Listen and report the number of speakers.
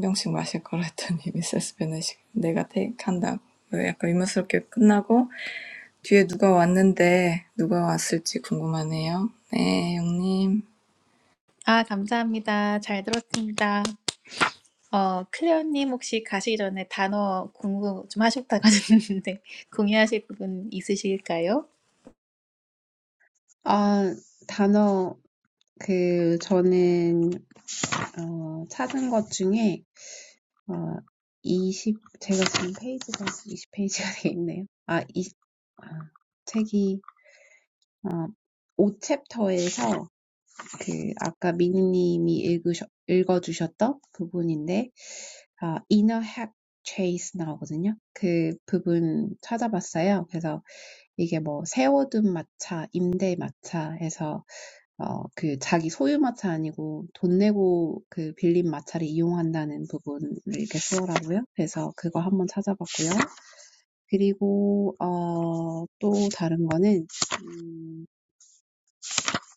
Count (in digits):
3